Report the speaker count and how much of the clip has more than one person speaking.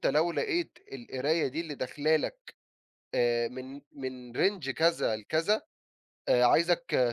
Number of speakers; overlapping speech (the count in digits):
1, no overlap